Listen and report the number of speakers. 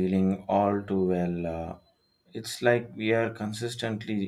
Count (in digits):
1